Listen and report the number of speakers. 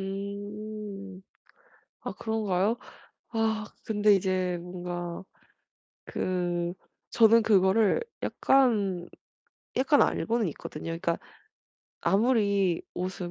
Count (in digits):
1